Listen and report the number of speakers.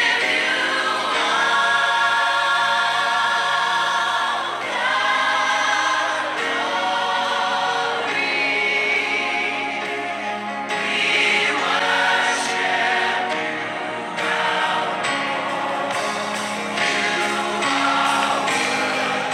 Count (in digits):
0